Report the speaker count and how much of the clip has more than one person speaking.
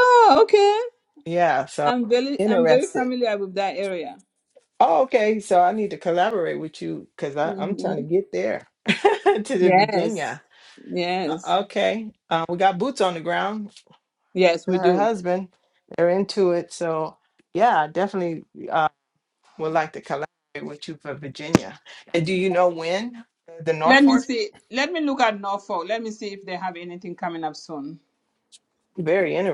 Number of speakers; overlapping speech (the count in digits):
2, about 10%